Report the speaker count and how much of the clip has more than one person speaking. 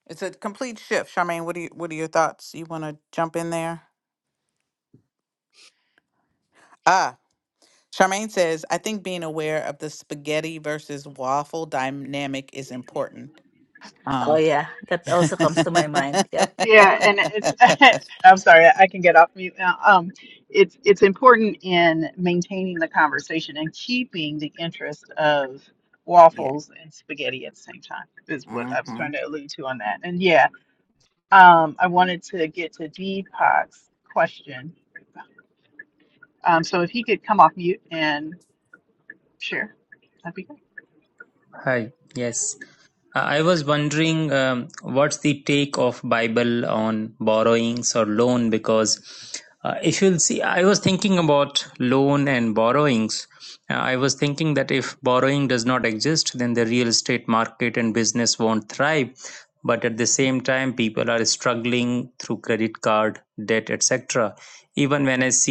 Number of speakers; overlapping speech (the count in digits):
4, about 1%